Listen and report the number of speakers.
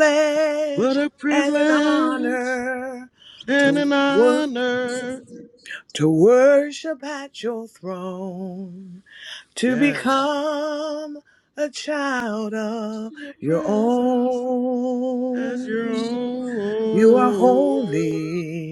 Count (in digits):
2